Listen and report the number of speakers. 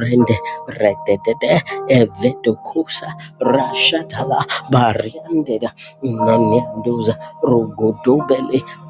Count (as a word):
one